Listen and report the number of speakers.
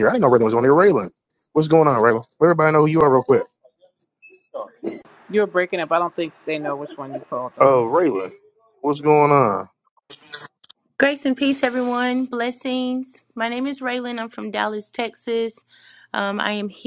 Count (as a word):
three